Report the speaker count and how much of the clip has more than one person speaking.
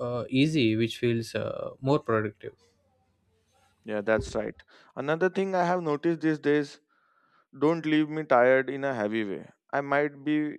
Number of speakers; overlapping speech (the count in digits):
2, no overlap